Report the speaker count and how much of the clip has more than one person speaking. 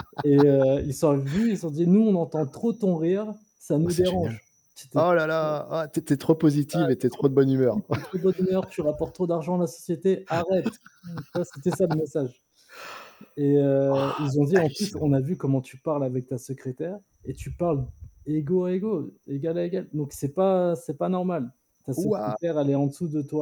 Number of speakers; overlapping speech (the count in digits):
2, about 9%